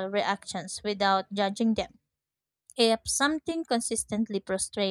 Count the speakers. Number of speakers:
1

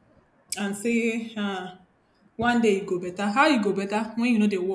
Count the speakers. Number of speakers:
1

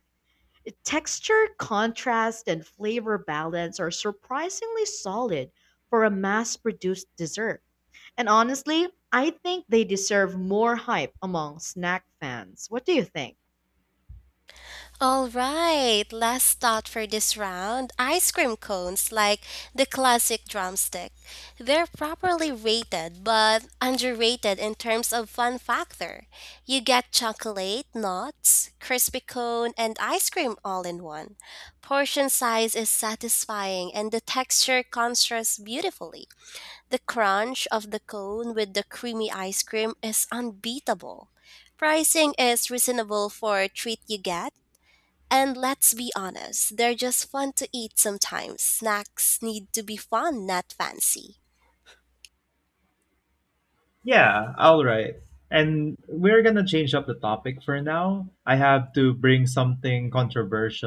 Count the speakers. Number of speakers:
3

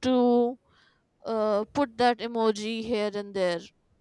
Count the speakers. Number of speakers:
1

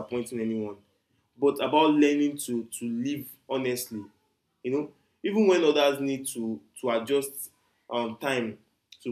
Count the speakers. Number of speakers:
1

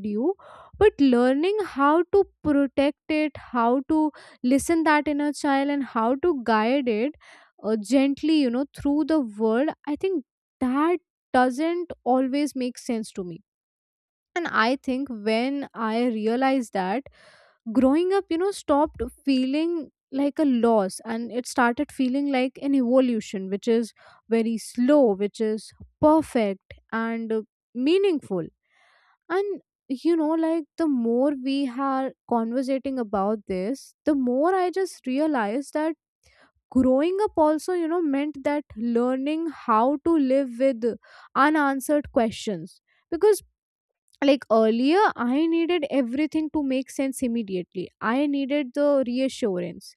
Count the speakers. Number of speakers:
1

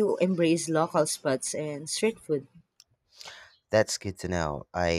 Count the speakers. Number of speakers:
2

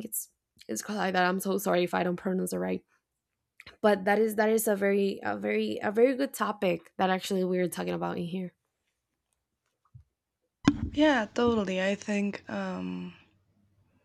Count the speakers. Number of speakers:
2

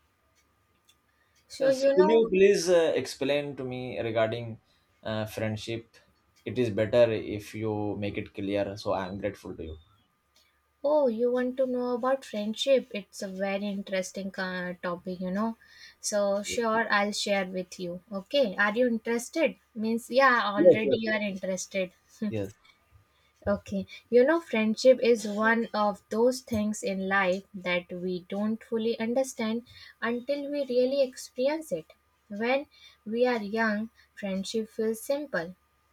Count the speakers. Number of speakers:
2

